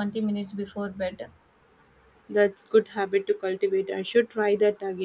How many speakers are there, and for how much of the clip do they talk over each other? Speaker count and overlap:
two, no overlap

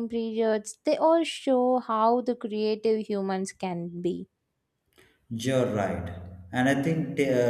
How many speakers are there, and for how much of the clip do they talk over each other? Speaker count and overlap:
two, no overlap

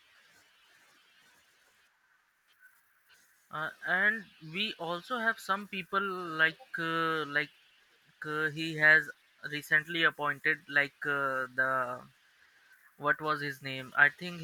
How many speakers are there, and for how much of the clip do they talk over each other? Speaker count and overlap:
one, no overlap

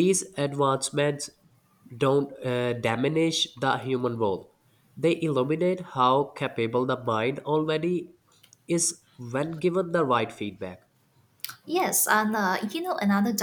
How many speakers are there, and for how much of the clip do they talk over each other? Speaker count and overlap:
two, no overlap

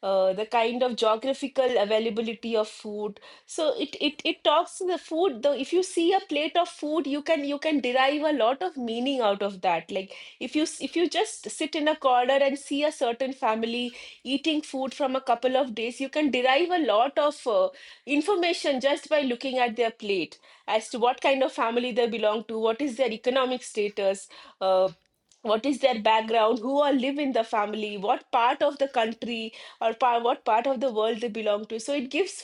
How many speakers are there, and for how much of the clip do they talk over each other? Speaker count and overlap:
one, no overlap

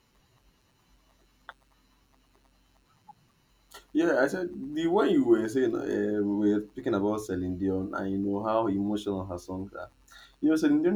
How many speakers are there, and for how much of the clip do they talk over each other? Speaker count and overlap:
one, no overlap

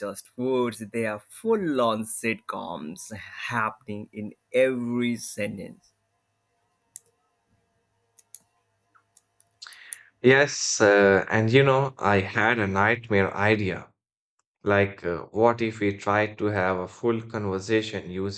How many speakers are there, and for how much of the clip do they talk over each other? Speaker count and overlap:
two, no overlap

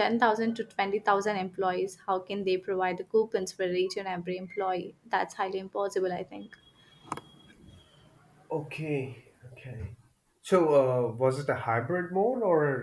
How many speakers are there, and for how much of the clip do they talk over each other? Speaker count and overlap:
two, no overlap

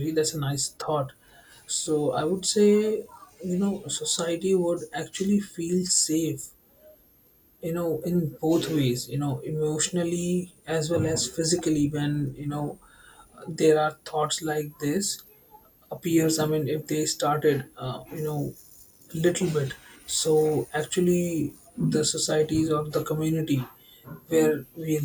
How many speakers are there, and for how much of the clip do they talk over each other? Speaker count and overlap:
one, no overlap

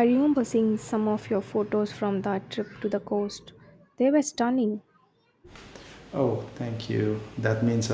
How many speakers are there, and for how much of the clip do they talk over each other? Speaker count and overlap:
two, no overlap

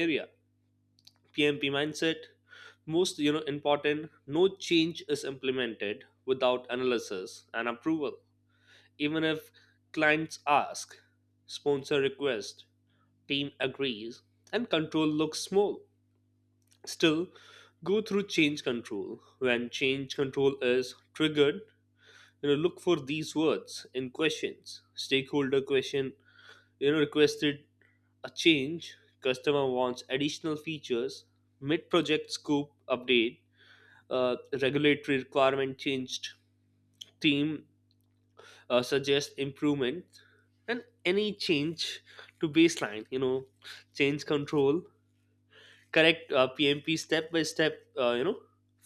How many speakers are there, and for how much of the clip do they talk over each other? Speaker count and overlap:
one, no overlap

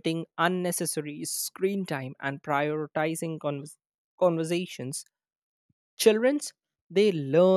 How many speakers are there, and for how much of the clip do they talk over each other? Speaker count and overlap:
one, no overlap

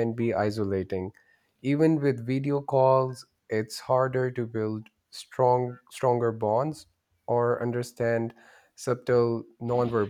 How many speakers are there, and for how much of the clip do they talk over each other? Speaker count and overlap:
one, no overlap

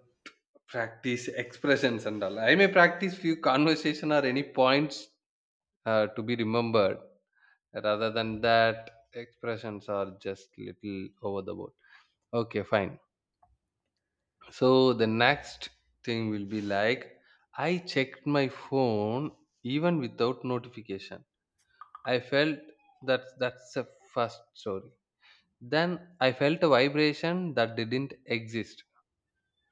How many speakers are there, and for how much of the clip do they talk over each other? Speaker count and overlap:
one, no overlap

